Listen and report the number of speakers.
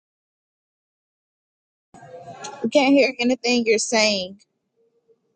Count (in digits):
1